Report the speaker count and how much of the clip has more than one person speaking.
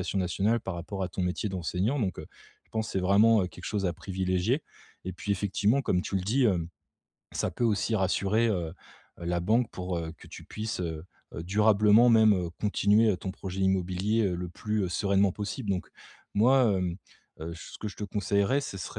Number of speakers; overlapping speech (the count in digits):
1, no overlap